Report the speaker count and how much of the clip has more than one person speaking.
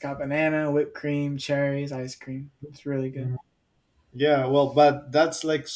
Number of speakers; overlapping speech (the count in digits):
2, about 2%